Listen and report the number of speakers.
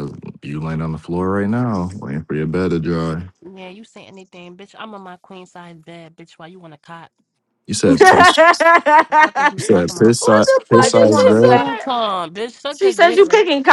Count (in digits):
3